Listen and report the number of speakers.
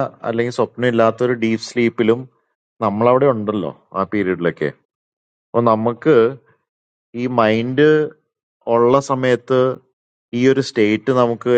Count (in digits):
1